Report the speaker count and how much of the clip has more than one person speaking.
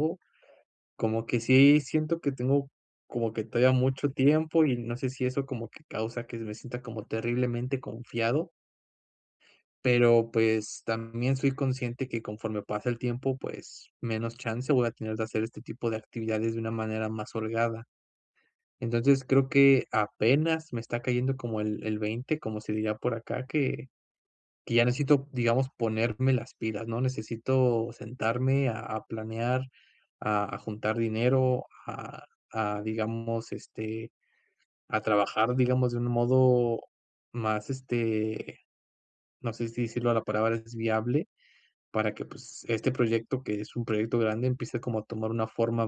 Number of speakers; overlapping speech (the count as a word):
one, no overlap